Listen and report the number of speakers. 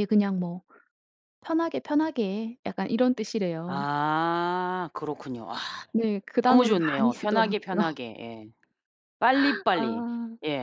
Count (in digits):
2